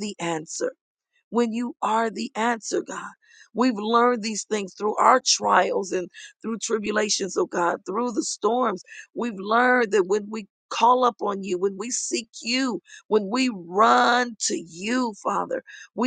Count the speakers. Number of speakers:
1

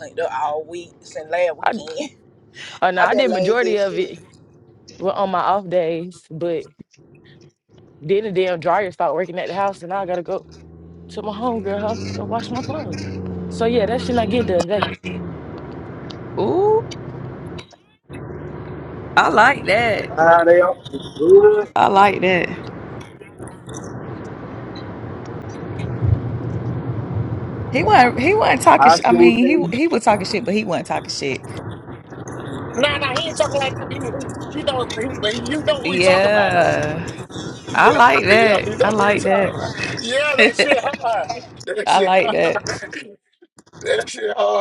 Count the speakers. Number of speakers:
5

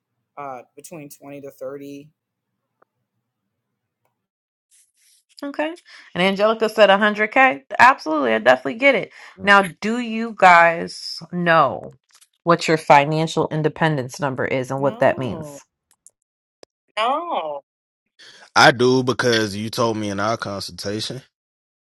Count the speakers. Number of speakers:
3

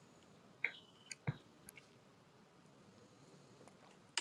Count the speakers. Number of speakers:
0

